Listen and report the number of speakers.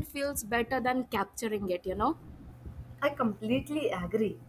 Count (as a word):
two